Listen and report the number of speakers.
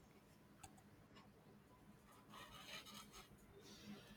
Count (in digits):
0